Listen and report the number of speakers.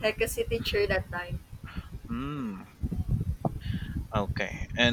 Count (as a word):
two